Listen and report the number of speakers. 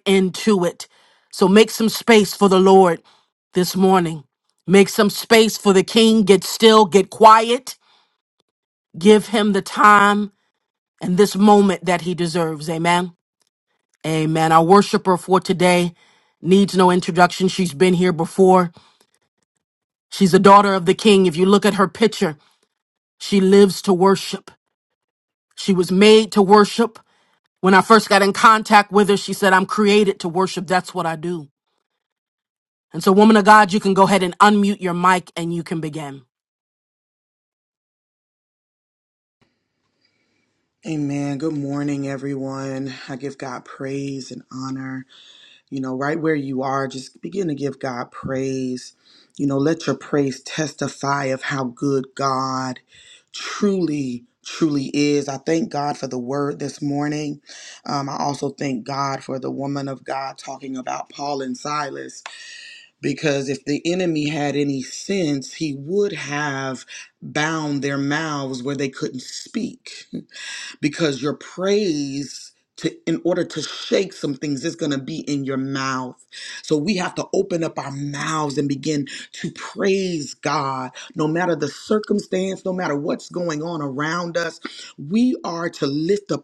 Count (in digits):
2